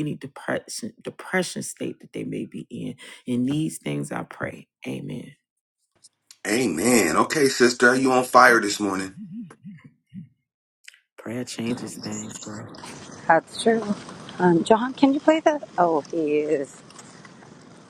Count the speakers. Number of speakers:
3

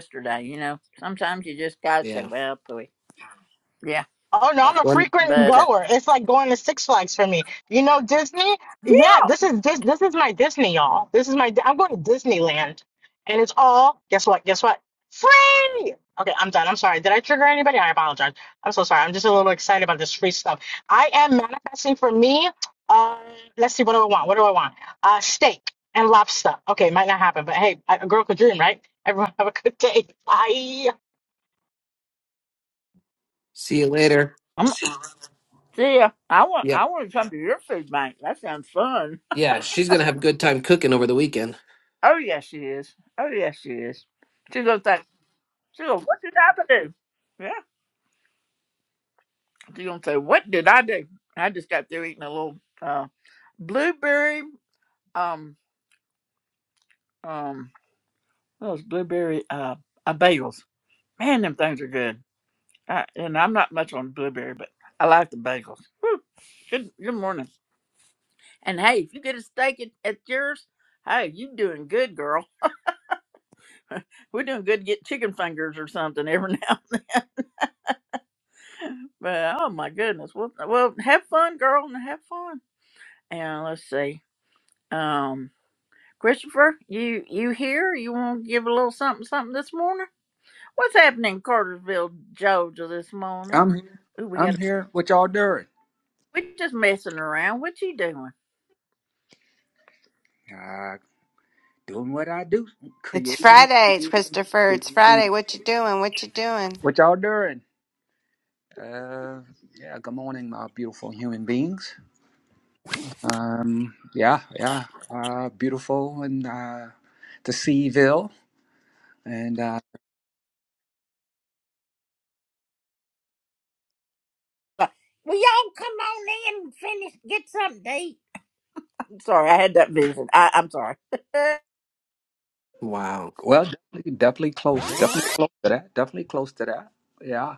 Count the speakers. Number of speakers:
5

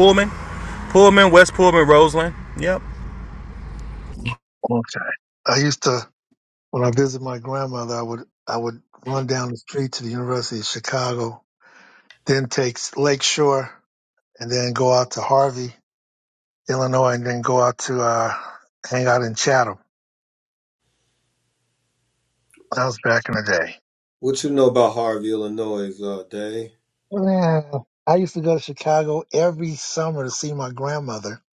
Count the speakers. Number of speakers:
3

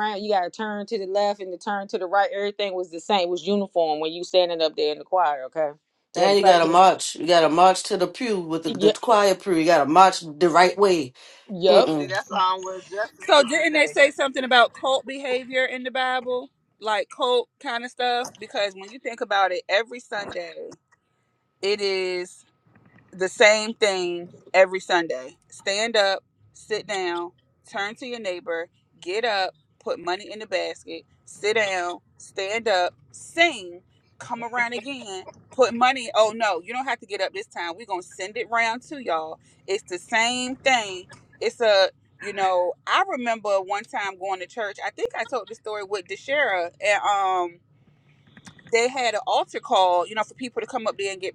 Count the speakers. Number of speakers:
4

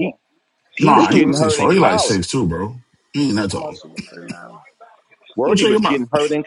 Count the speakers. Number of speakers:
3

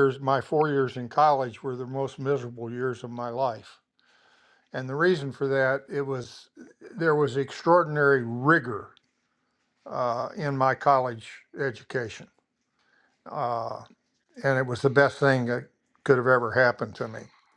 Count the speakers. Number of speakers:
1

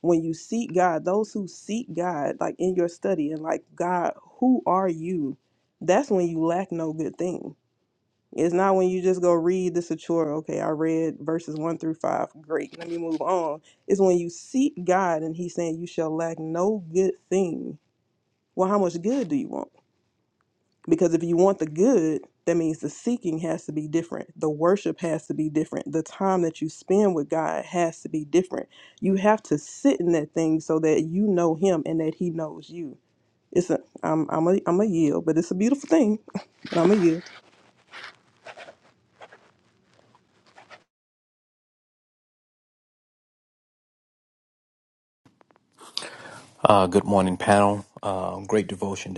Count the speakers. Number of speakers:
2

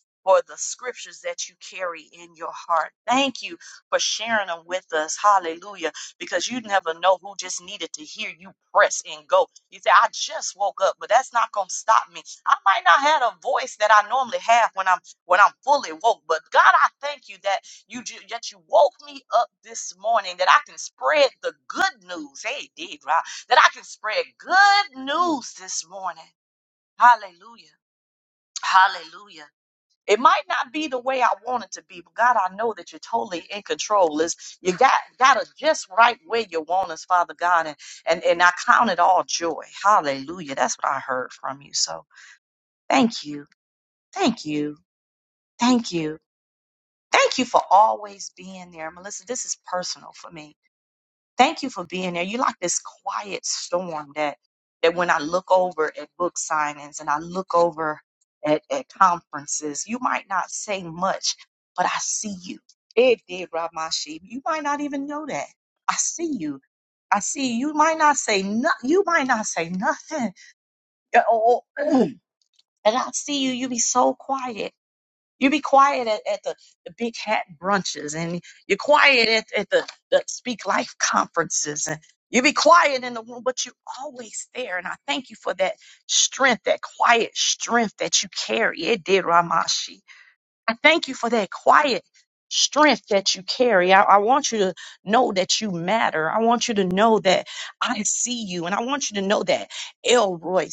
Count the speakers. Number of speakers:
1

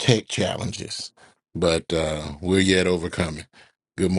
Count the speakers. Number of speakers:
1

